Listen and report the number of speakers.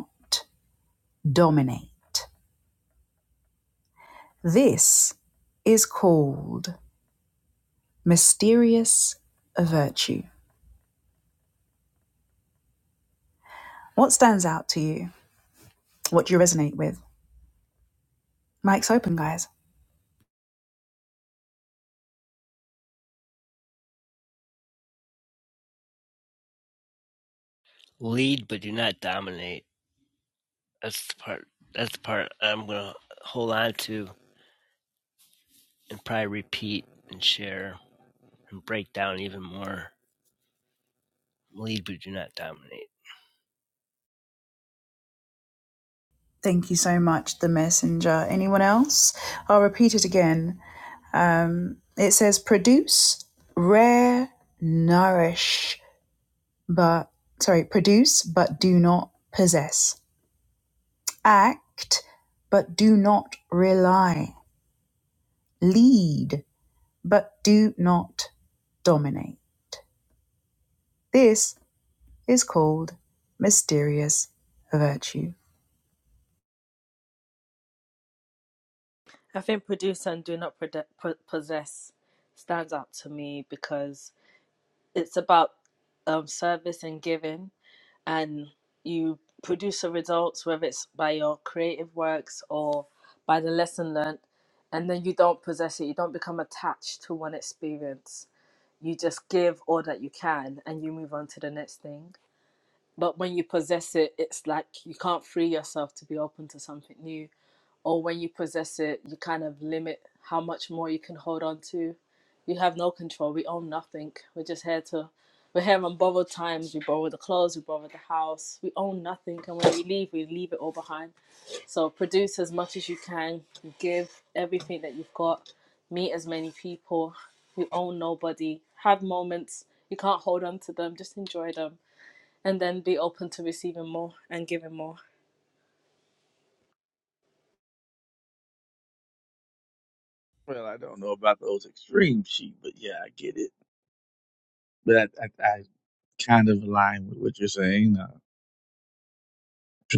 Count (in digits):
4